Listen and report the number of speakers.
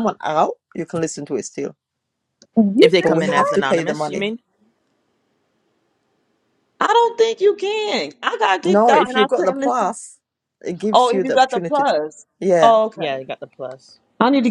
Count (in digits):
3